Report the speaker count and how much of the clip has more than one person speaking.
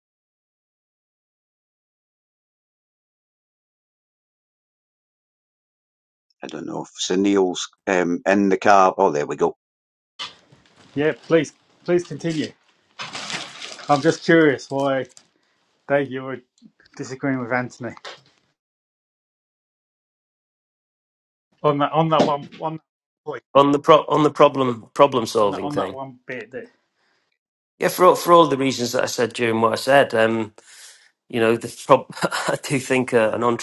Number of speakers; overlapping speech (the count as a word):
three, about 2%